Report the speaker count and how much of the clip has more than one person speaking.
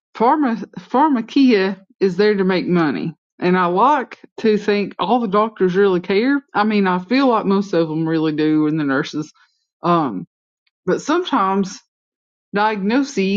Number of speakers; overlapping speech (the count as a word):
one, no overlap